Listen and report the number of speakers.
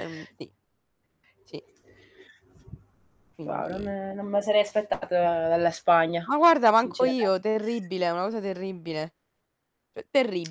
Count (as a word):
two